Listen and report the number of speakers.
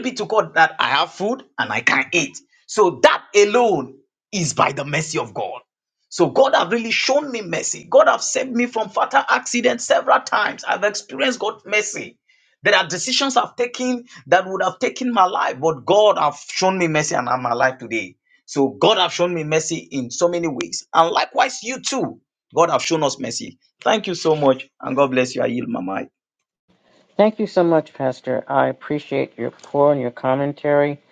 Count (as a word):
two